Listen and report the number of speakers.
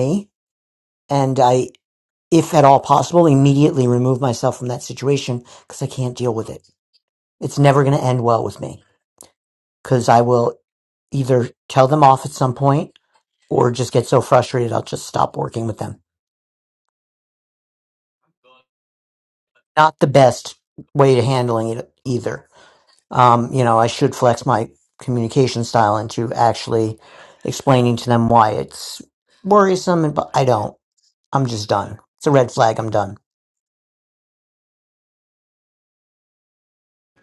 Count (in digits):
1